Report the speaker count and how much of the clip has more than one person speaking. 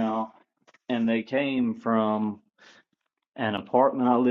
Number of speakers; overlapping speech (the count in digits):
1, no overlap